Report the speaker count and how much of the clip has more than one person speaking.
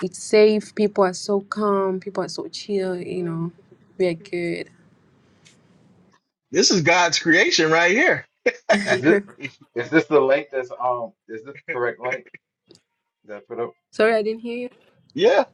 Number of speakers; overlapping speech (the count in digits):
3, no overlap